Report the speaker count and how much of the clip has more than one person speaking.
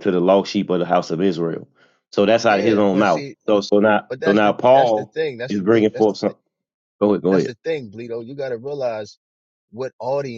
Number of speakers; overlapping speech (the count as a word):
two, about 27%